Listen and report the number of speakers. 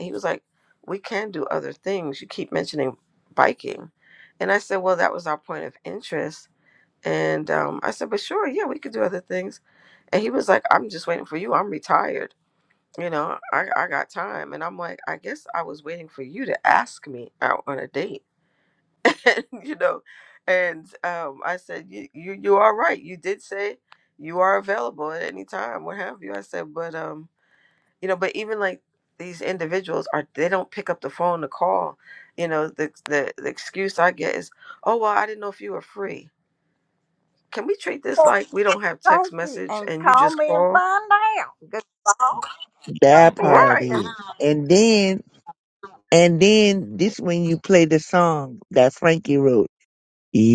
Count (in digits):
3